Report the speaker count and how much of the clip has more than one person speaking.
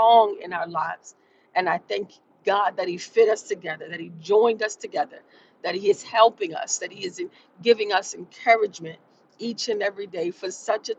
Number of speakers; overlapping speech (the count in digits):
1, no overlap